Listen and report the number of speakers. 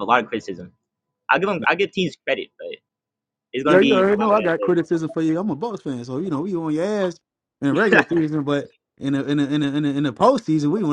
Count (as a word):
two